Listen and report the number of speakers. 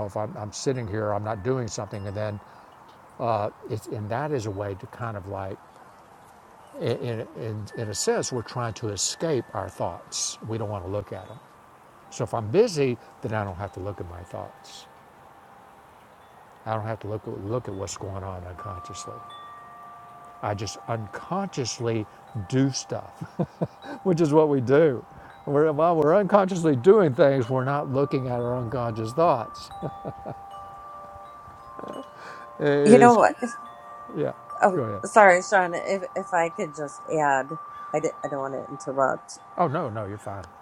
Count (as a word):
two